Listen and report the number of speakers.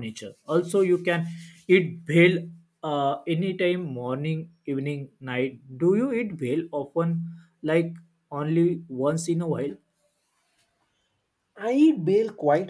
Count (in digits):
2